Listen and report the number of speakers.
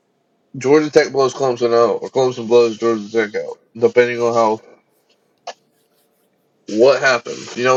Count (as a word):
one